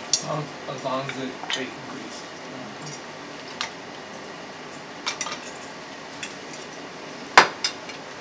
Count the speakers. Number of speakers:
one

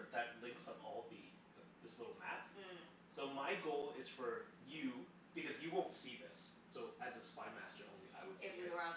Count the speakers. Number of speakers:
two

